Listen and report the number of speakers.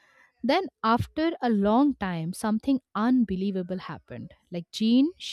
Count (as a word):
one